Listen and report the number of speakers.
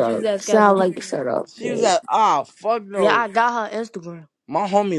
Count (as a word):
three